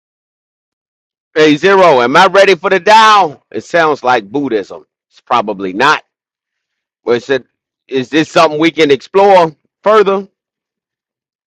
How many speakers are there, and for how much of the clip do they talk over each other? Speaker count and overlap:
one, no overlap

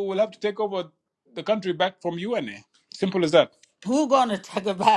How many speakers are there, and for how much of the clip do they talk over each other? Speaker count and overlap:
two, no overlap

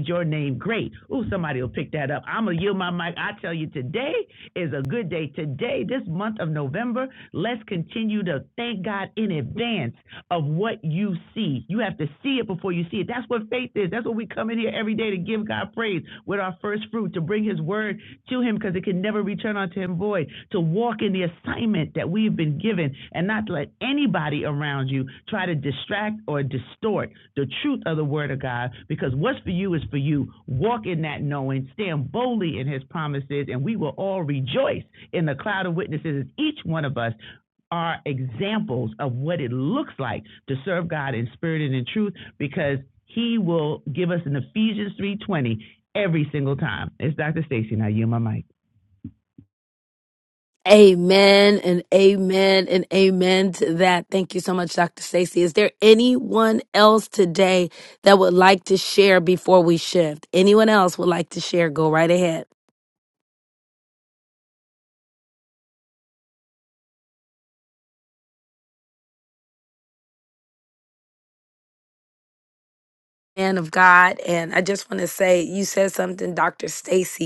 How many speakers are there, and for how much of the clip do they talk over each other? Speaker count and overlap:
two, no overlap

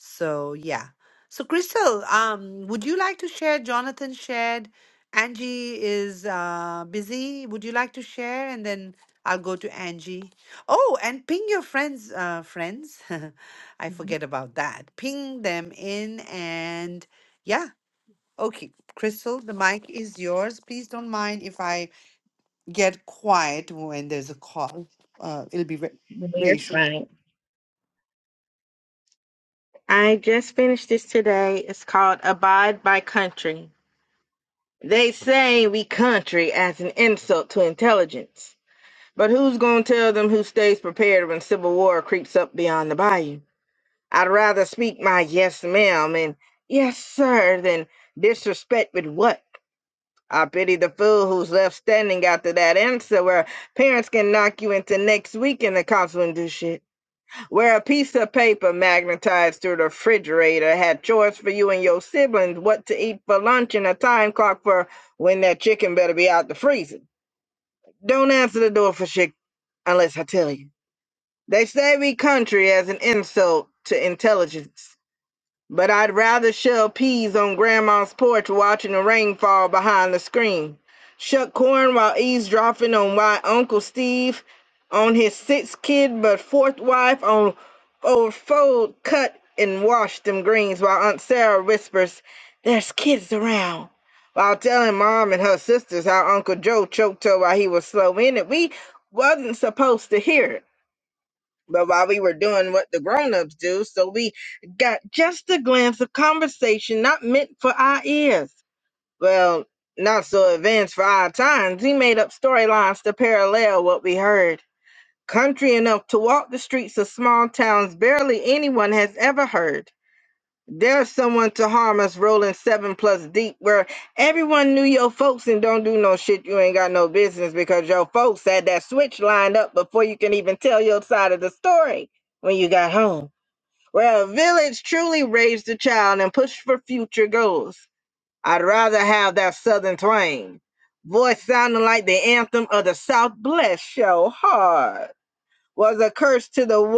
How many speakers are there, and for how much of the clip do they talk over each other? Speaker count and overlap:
two, under 1%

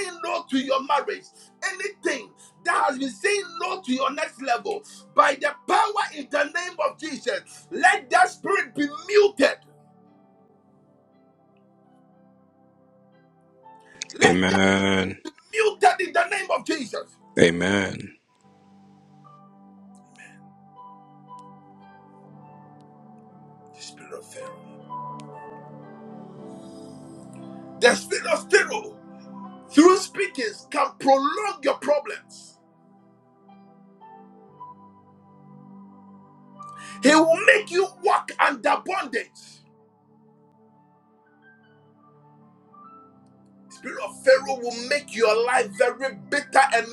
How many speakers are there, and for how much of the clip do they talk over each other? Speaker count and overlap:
two, about 1%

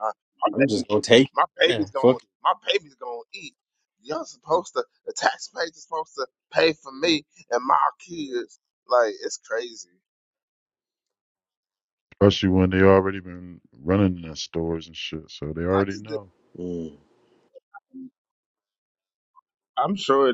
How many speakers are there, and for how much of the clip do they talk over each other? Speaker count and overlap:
three, about 6%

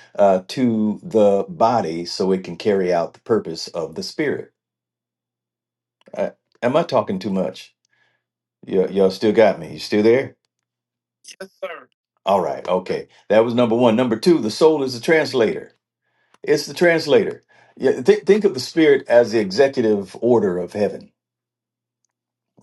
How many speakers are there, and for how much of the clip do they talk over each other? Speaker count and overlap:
one, no overlap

